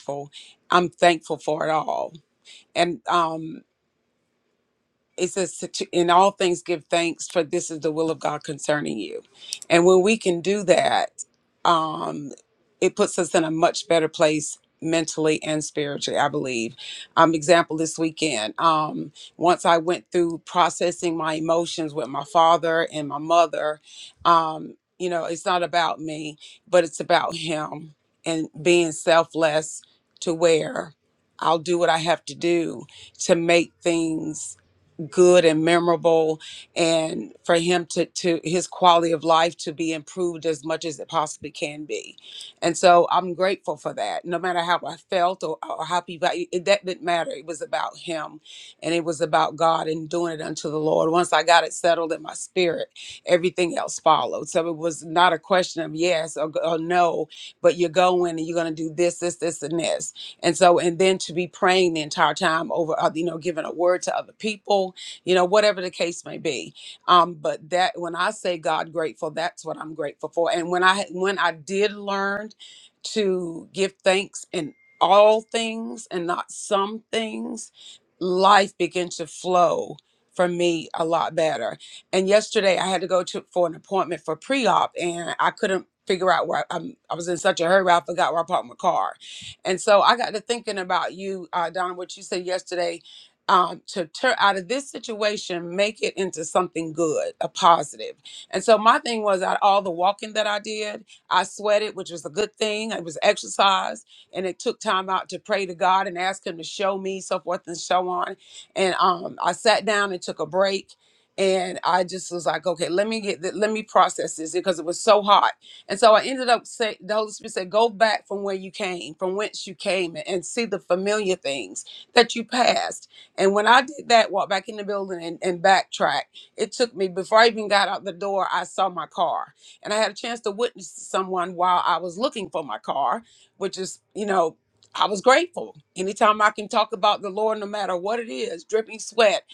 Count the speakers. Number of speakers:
1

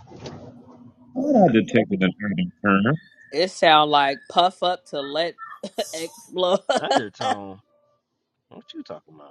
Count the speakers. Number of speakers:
3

